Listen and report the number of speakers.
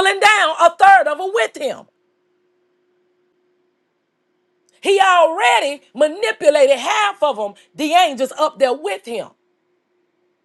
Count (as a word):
one